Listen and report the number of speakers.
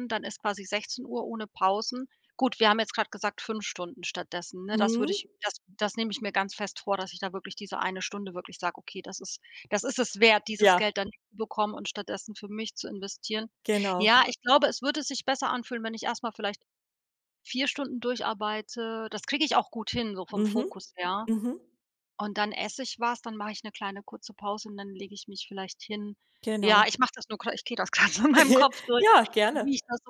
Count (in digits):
2